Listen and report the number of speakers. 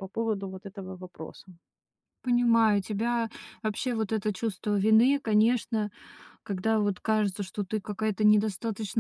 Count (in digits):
2